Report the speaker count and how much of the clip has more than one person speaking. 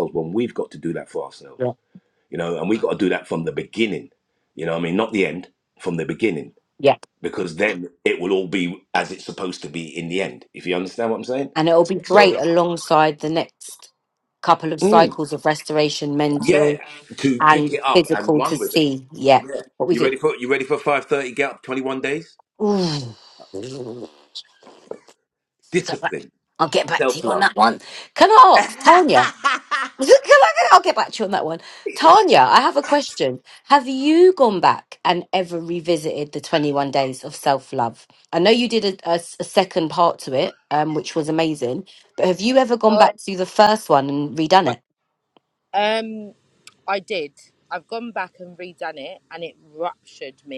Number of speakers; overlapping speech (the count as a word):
three, about 8%